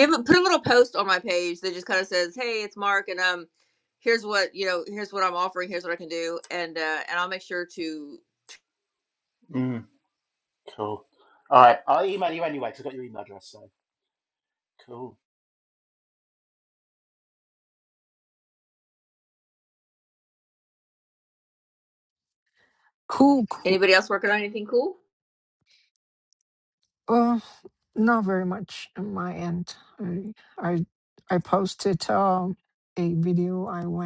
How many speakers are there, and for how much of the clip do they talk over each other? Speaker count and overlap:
3, under 1%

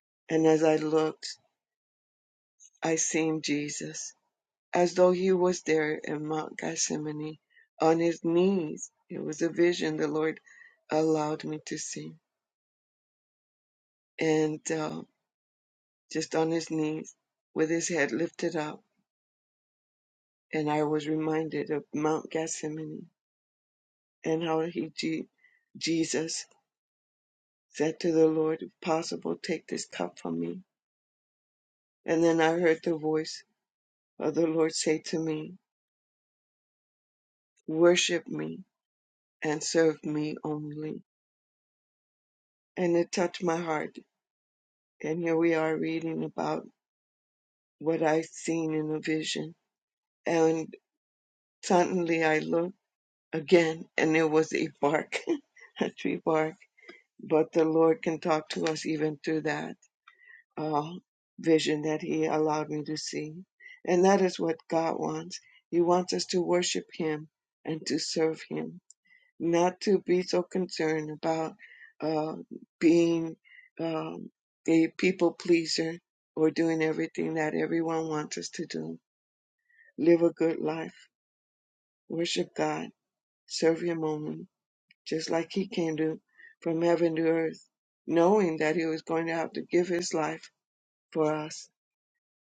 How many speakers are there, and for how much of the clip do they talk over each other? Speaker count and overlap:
1, no overlap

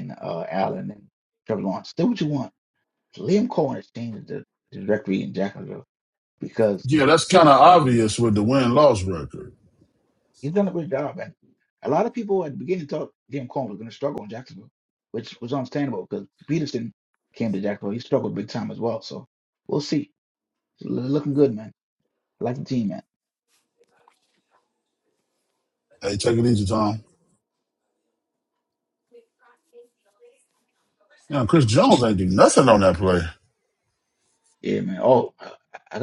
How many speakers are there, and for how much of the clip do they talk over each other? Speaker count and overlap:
2, under 1%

